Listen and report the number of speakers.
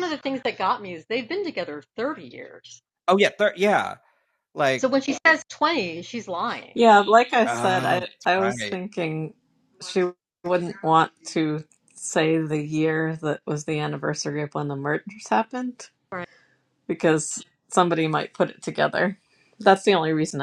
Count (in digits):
3